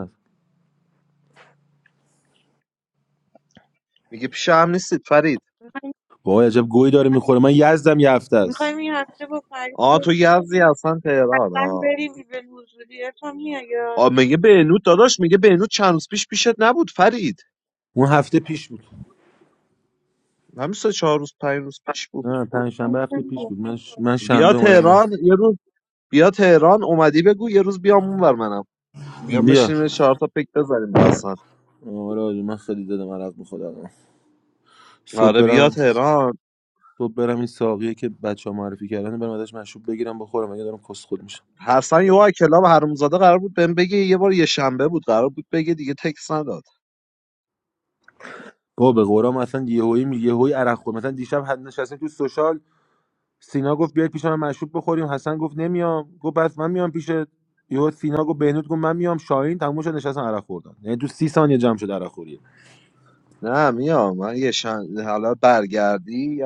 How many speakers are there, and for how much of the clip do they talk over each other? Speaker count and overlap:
3, about 4%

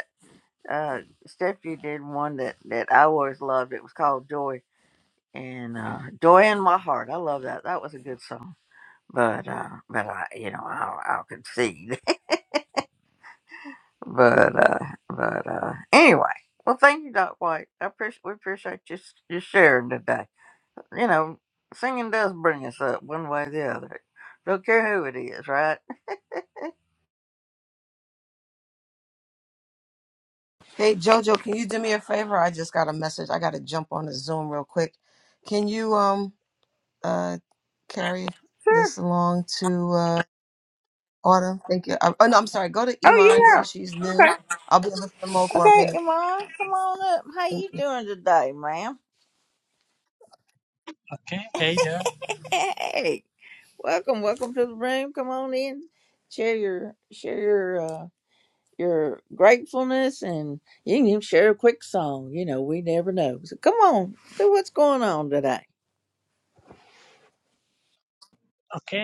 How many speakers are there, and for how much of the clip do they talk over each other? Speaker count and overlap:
3, about 3%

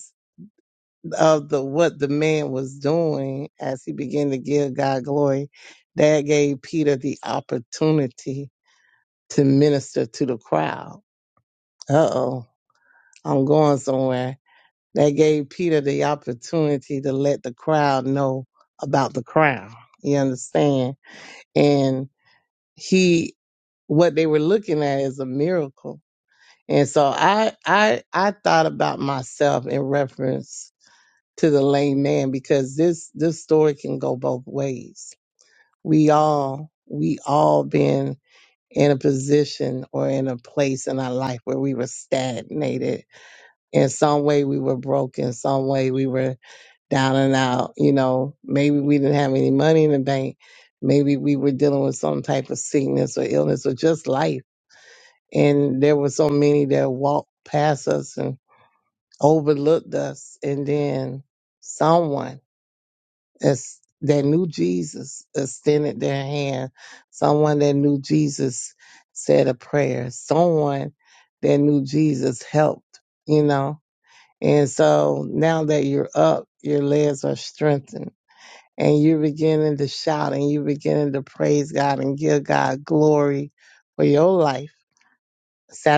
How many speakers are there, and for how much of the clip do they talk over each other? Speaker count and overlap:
1, no overlap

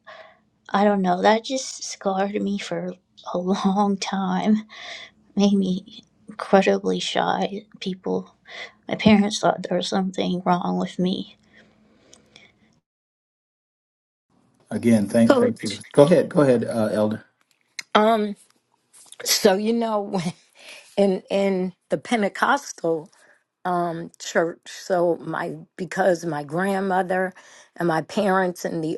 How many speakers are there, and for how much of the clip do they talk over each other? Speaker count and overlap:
3, about 2%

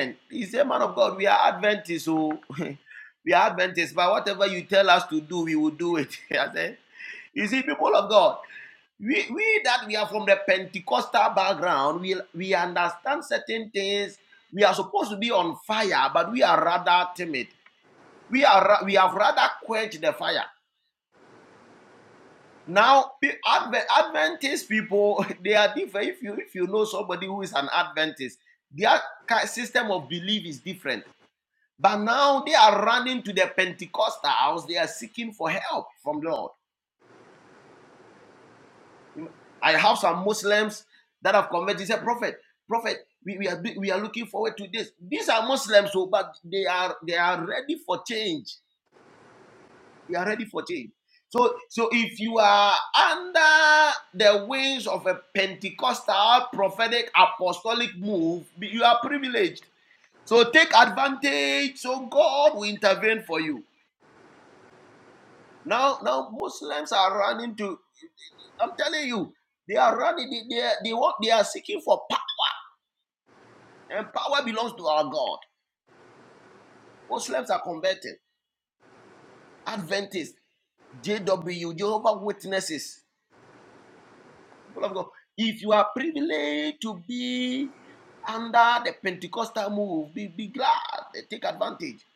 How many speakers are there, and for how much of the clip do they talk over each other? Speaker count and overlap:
1, no overlap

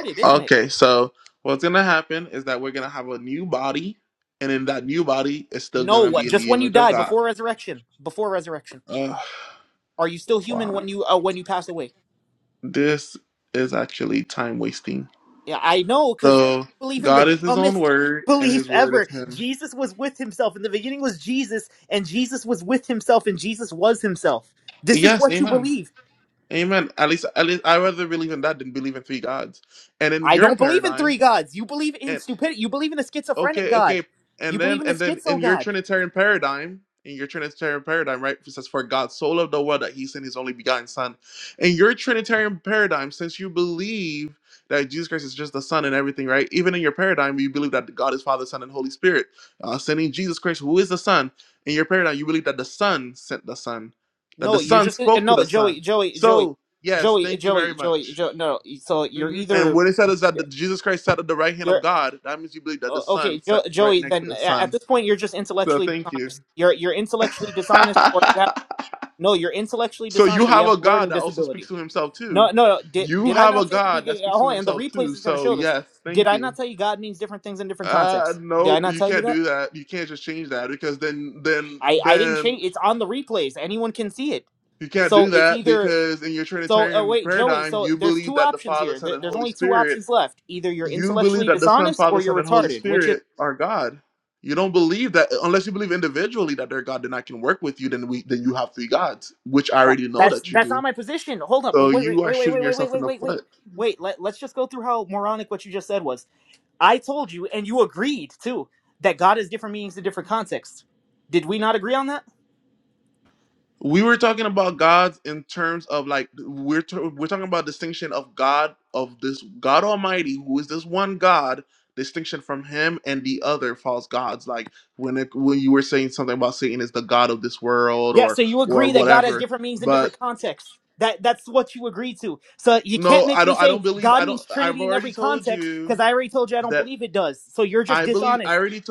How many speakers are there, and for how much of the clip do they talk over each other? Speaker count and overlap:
2, about 25%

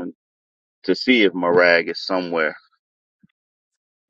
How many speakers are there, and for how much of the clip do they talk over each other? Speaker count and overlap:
1, no overlap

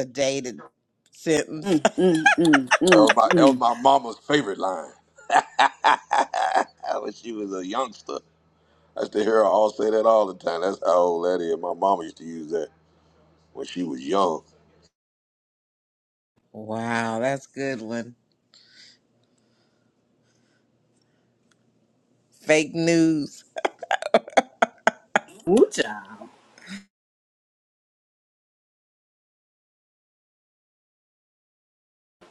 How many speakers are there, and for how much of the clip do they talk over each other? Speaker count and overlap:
3, about 3%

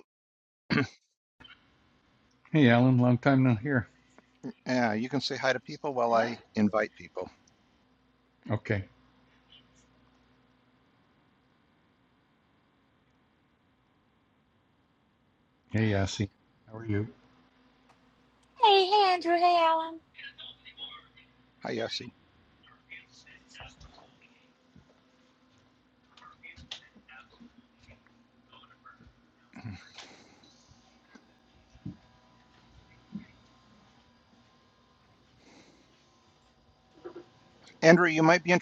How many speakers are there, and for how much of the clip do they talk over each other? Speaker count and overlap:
3, about 1%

